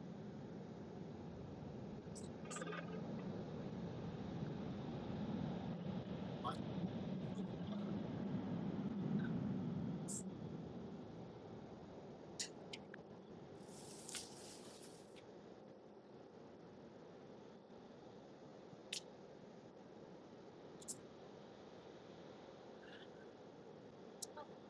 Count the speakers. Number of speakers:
zero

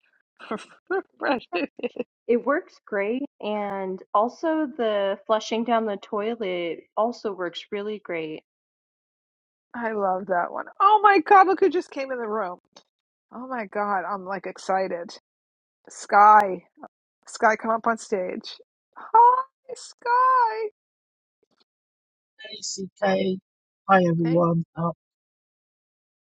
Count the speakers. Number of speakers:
three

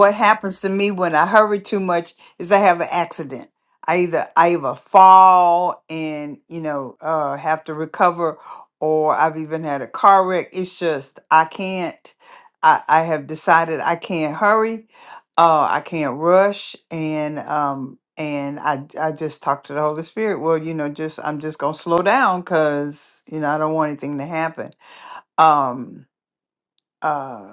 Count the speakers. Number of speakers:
one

